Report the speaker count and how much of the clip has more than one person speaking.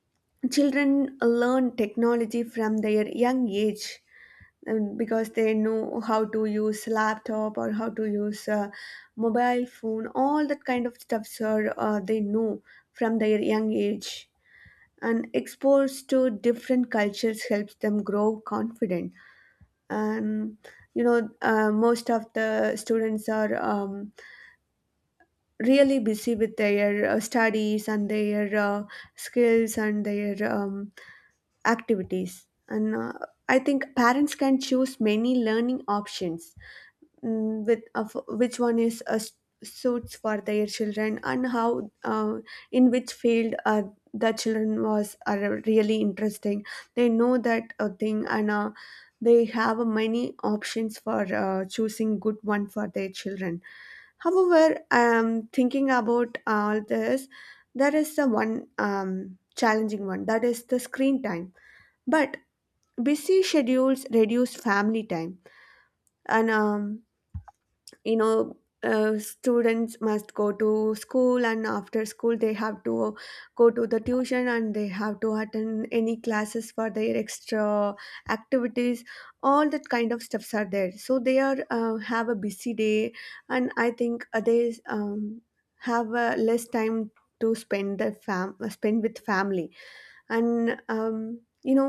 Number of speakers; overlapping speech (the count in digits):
1, no overlap